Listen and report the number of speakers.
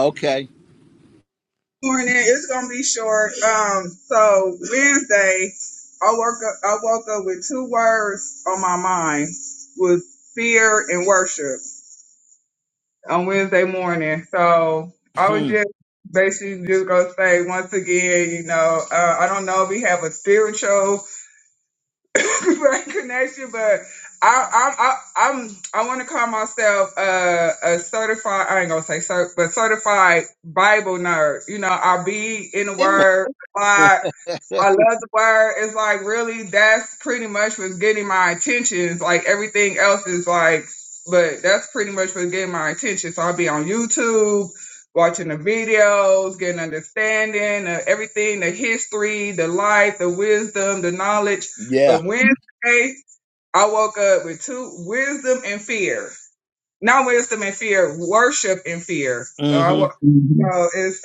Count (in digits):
2